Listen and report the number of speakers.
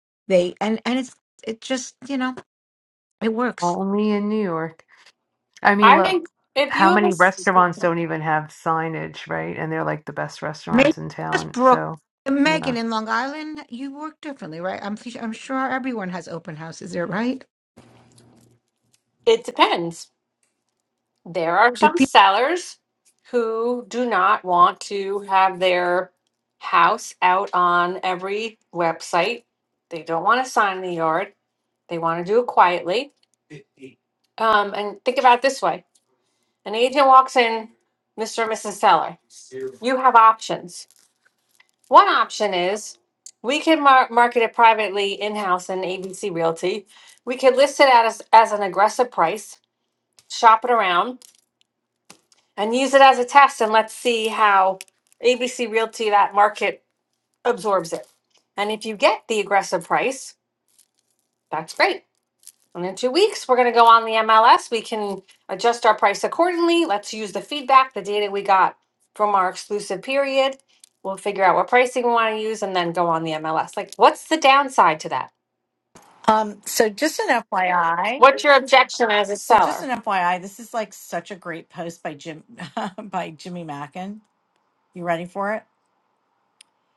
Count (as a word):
four